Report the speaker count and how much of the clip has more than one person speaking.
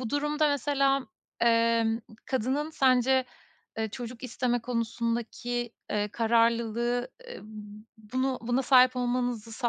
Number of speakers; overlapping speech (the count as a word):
one, no overlap